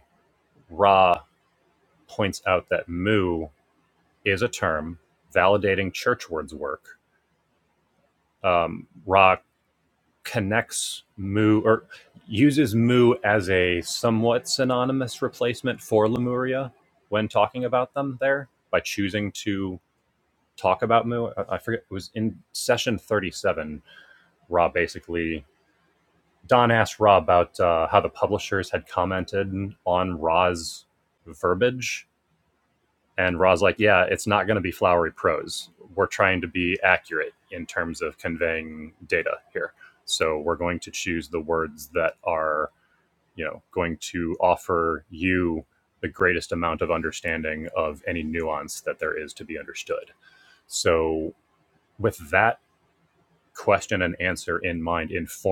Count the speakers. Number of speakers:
1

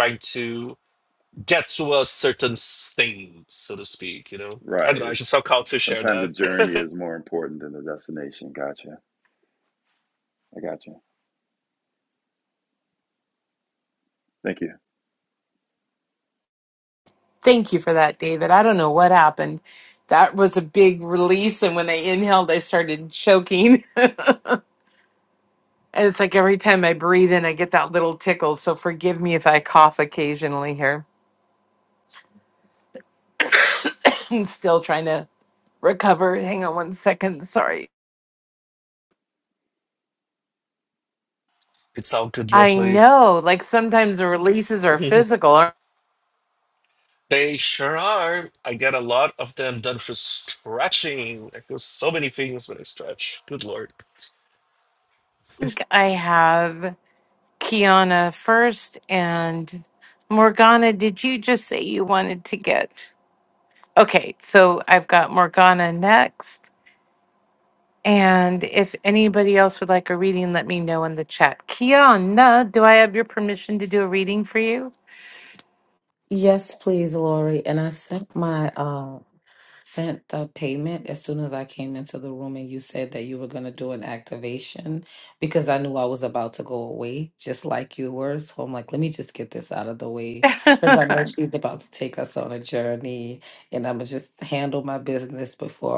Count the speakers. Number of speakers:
4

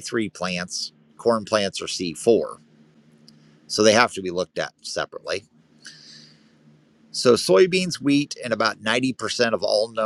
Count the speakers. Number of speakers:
1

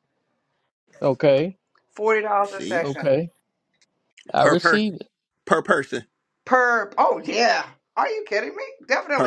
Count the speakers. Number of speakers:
3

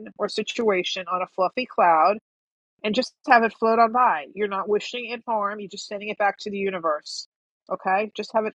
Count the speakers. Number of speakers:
1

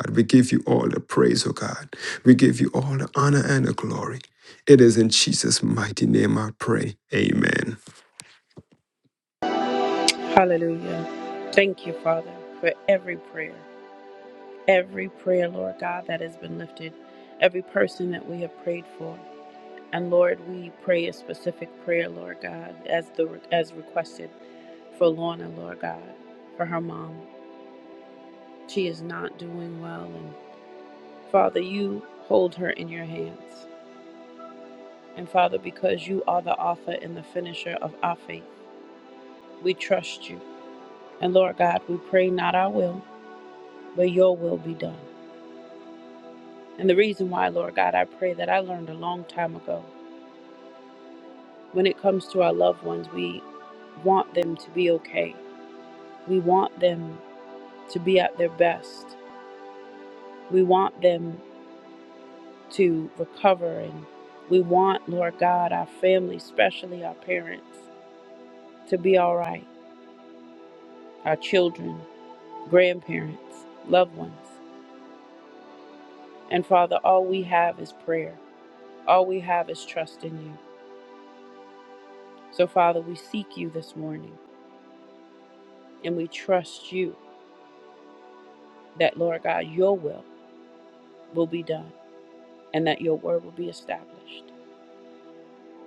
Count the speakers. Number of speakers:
2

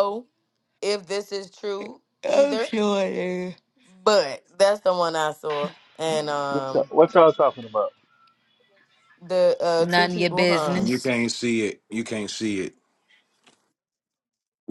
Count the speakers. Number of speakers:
4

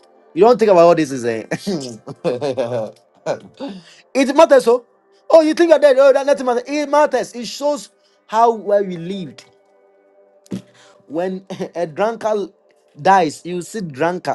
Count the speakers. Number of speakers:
1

